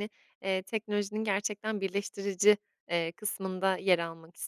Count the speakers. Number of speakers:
1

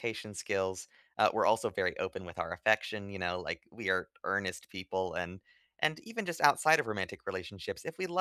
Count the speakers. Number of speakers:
1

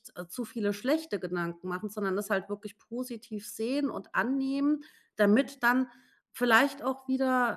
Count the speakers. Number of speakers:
1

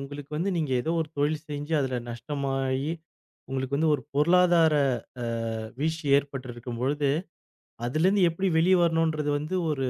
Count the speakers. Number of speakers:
1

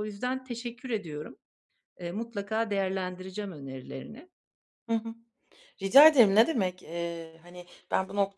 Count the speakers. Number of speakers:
2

